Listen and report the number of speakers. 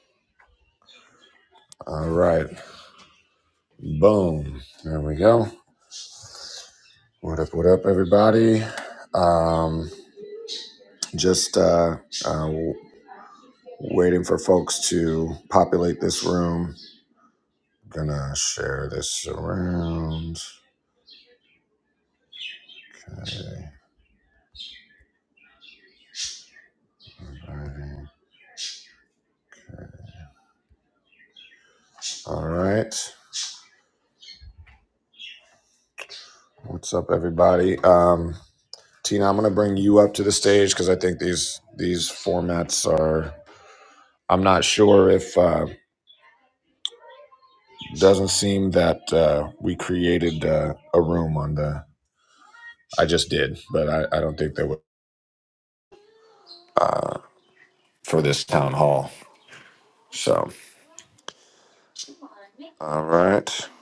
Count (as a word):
one